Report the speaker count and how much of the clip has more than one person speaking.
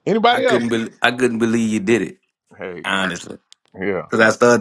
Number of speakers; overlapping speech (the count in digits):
2, about 9%